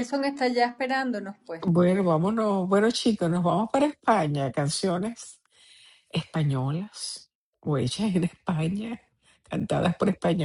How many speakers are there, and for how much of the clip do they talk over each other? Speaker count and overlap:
2, no overlap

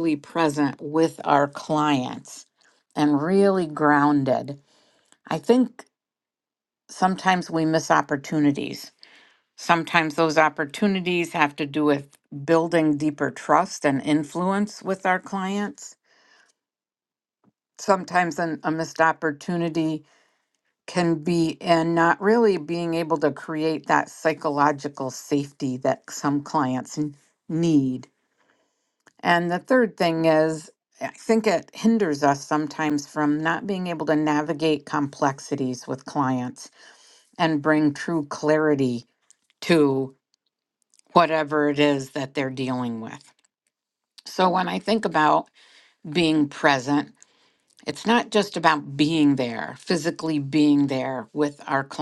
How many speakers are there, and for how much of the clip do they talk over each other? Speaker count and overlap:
1, no overlap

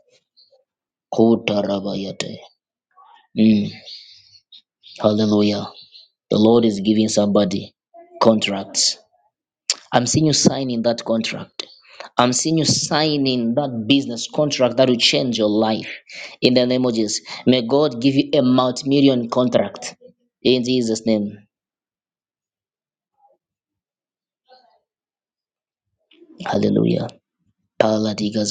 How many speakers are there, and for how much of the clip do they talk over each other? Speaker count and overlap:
1, no overlap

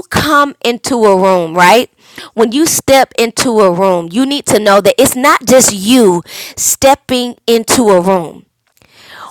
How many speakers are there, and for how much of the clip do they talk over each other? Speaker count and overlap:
1, no overlap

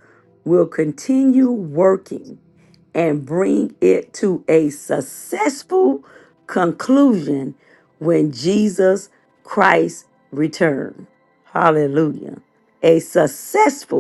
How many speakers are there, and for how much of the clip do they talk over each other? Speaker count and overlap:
1, no overlap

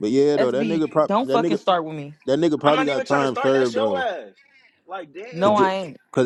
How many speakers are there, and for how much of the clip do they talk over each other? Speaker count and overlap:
3, about 49%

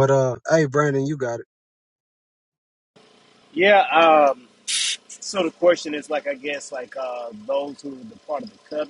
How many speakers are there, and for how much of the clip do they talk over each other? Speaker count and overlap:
2, no overlap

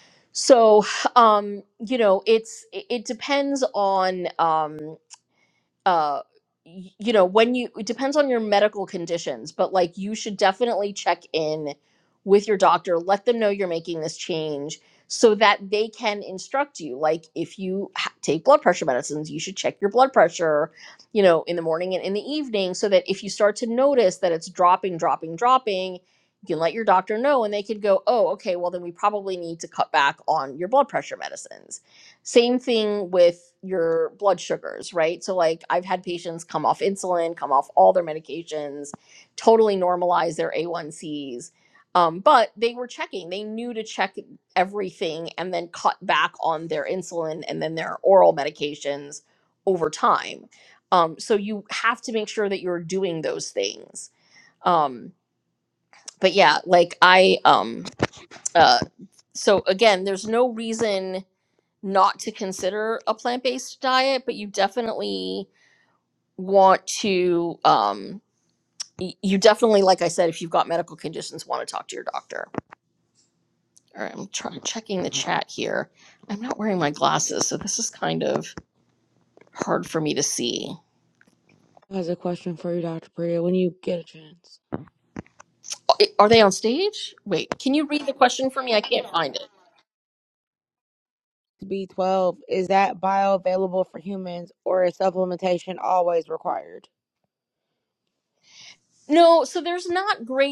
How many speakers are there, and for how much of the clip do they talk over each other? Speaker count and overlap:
2, no overlap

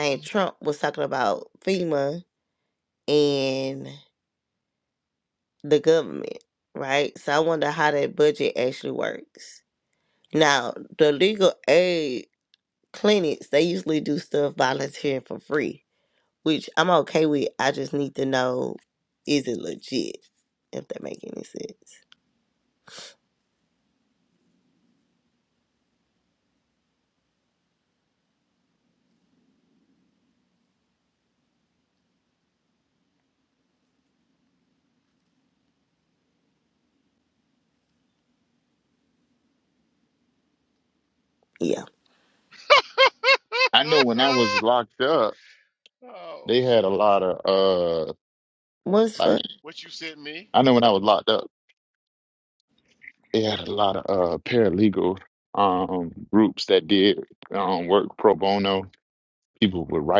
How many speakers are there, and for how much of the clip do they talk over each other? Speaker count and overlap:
3, about 1%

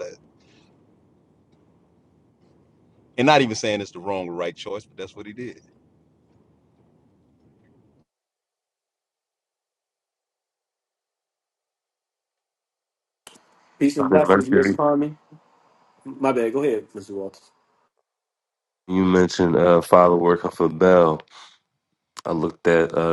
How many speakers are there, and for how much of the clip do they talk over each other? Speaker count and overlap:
3, about 3%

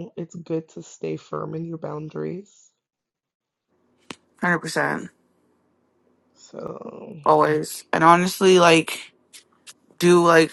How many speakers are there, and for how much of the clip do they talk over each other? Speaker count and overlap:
2, no overlap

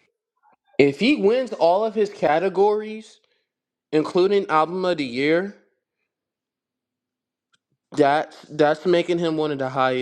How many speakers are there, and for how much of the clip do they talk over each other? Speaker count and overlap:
1, no overlap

